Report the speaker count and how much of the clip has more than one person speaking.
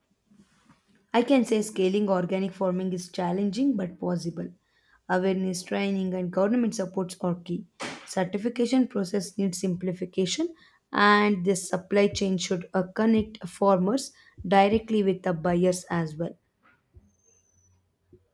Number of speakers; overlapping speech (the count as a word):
one, no overlap